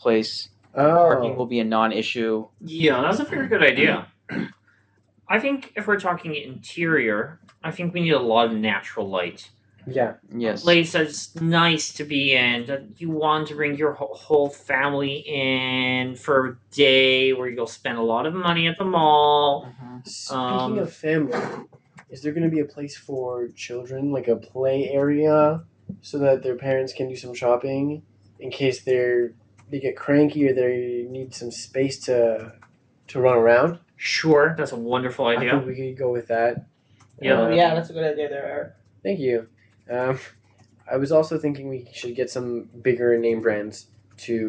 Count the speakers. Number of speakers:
four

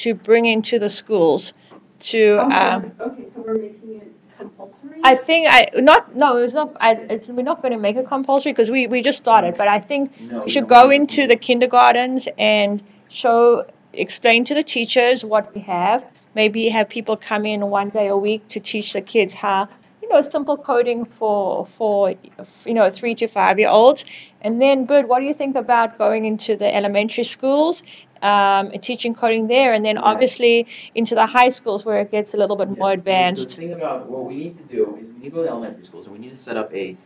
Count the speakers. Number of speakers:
three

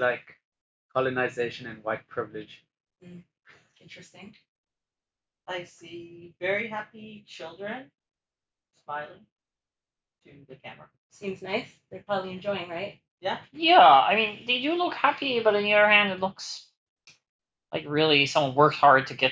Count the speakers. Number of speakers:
four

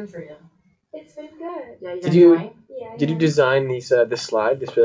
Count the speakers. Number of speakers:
three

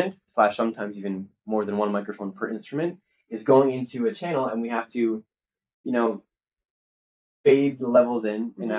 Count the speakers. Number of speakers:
one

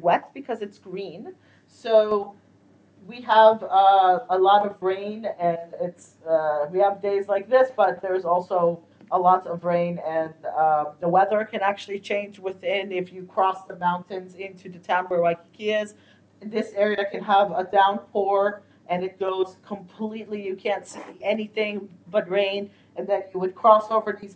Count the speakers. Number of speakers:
one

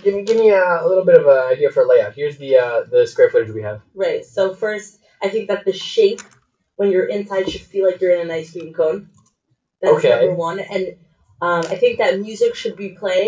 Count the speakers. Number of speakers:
two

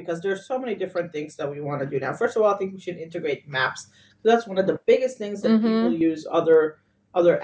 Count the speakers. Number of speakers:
one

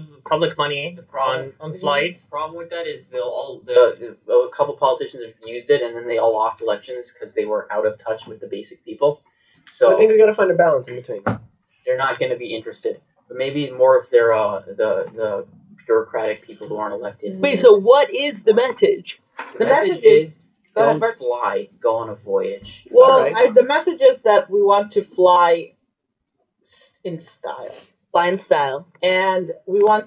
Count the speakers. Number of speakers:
five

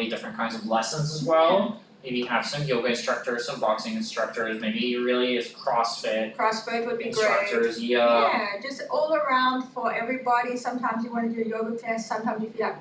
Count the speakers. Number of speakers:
two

